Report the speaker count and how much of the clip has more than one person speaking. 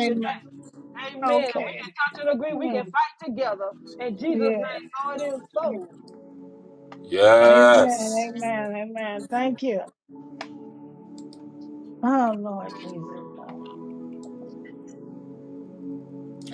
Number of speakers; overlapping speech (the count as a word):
three, about 17%